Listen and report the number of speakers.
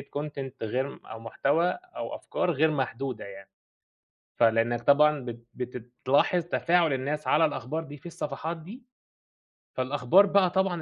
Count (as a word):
one